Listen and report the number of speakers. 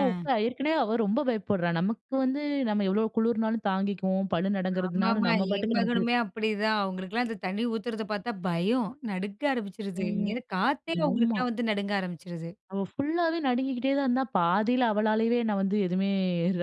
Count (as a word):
two